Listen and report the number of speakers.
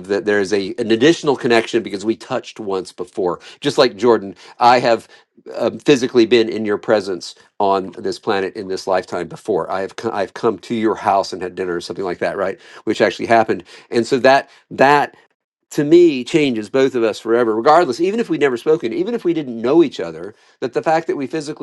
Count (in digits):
1